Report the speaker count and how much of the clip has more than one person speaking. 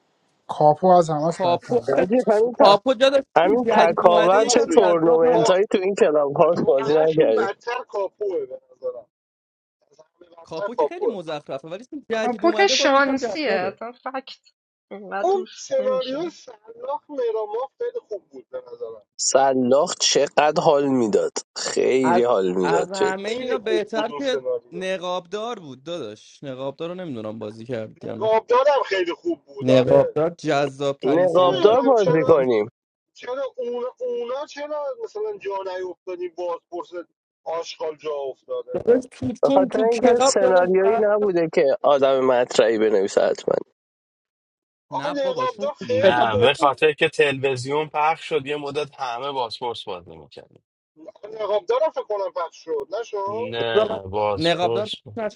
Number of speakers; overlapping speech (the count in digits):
6, about 29%